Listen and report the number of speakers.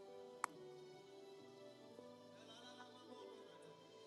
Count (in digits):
0